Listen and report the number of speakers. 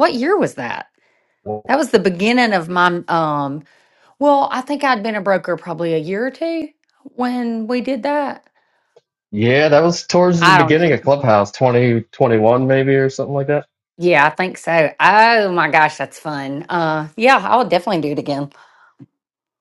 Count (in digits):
2